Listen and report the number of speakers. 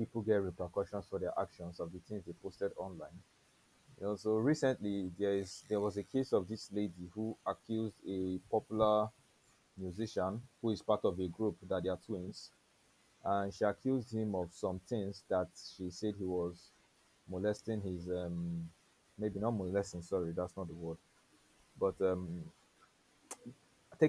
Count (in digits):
1